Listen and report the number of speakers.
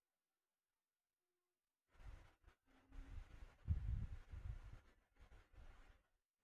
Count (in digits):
0